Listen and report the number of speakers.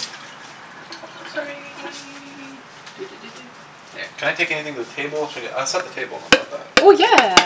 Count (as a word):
two